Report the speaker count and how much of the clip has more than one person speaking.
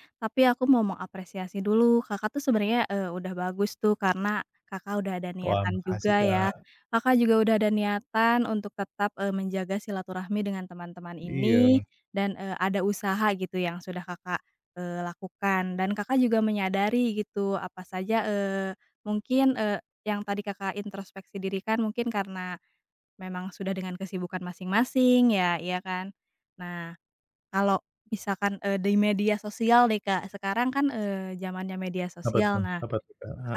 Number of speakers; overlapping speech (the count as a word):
two, about 7%